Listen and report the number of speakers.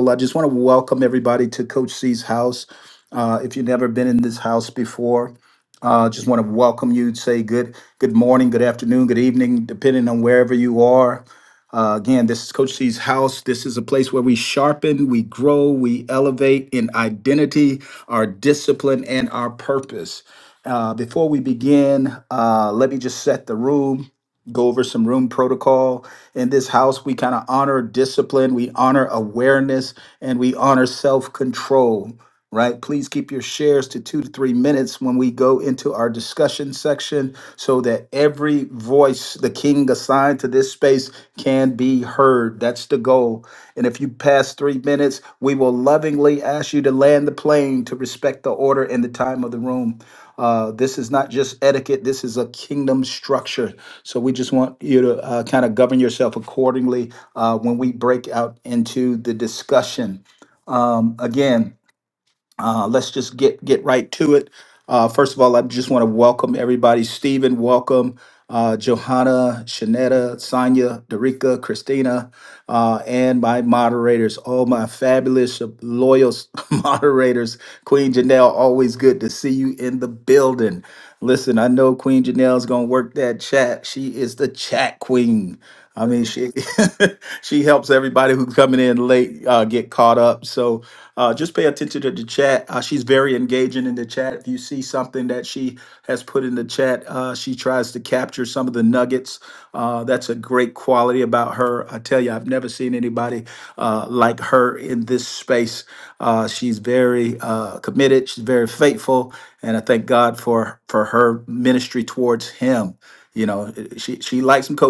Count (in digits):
1